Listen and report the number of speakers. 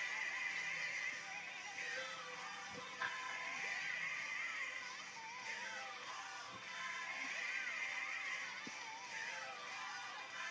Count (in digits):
0